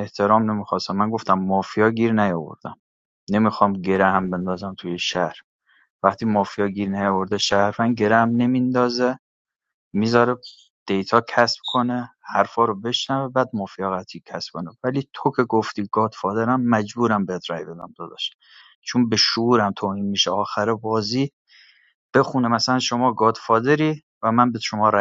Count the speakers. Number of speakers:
1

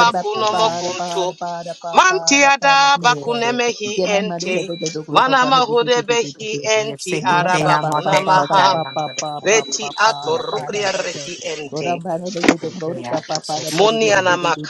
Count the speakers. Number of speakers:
3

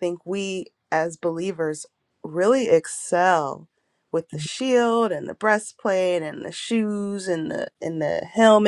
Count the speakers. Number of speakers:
1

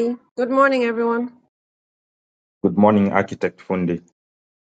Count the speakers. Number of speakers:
2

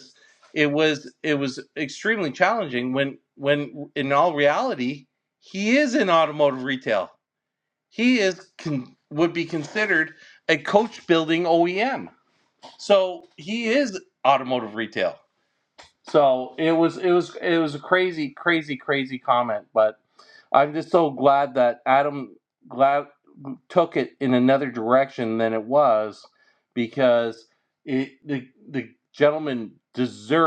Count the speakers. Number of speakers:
1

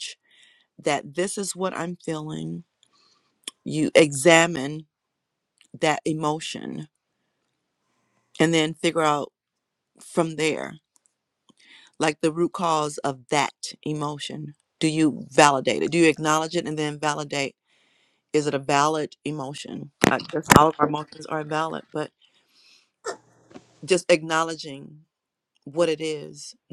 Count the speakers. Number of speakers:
1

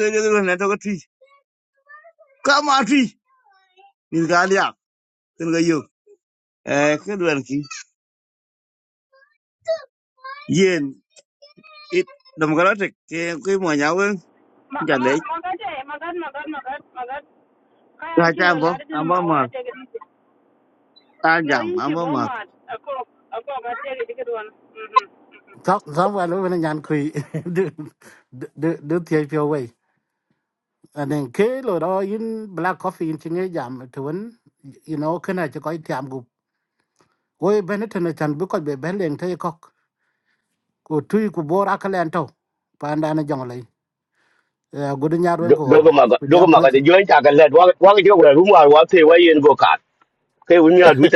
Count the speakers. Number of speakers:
4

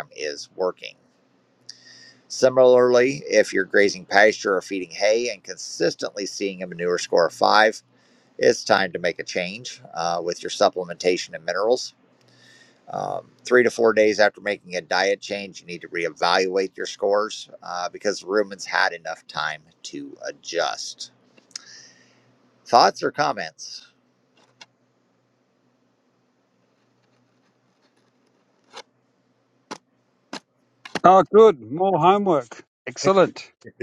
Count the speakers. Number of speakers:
2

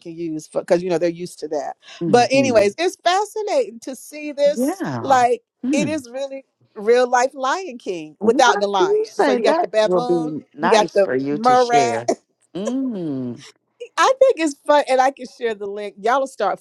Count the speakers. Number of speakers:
2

